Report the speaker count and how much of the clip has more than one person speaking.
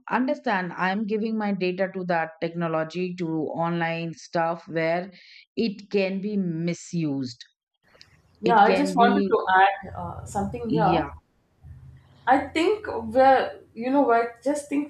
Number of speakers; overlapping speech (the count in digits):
2, about 9%